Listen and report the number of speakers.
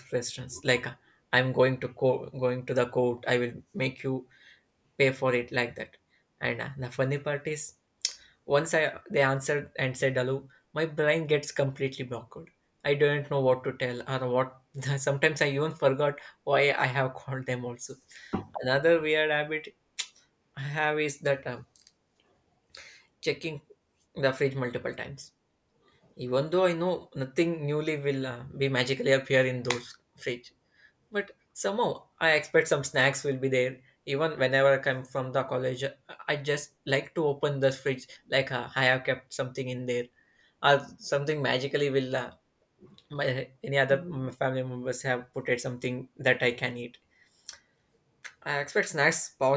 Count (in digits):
1